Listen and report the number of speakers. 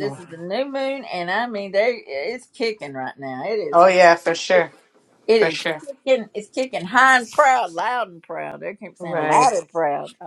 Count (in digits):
2